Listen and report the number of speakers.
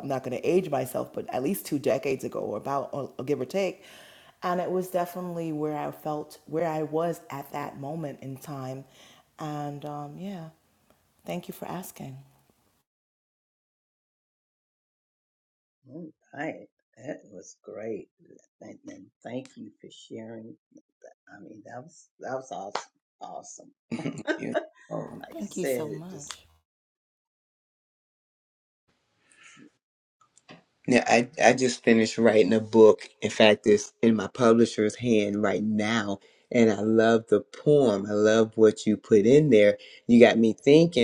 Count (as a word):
three